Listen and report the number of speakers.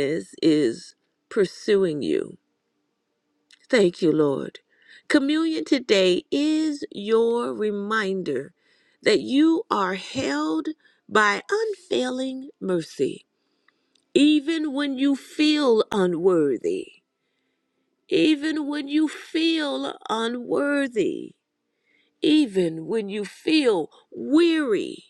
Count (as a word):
one